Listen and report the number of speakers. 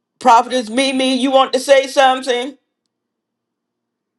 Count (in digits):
1